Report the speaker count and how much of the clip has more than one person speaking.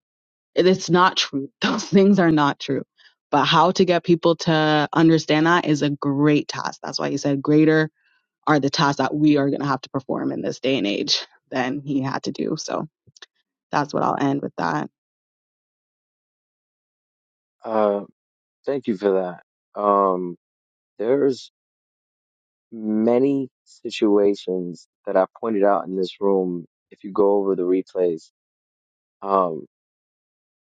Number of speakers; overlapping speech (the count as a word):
two, no overlap